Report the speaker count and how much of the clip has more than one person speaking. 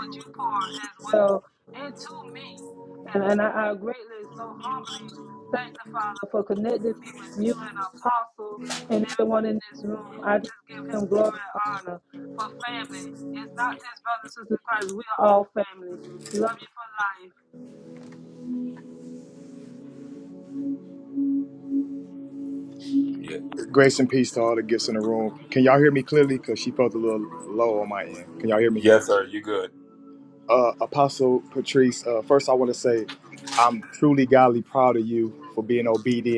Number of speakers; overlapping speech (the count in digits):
3, under 1%